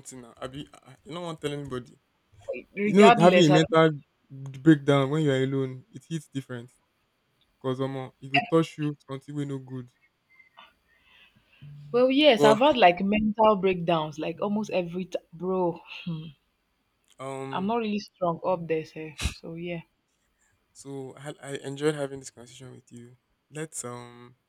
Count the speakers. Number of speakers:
2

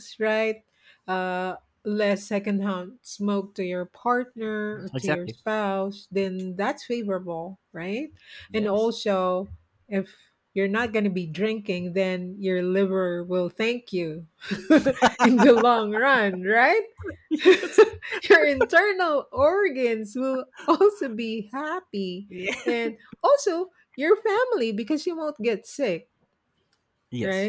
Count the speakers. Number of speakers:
2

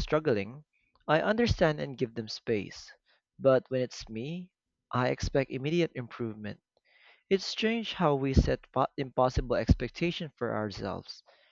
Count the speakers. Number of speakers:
1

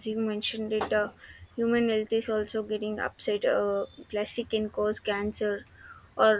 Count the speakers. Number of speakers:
1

